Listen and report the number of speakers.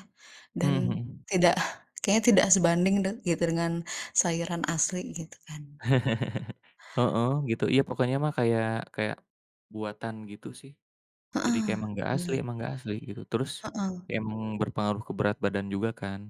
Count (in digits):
2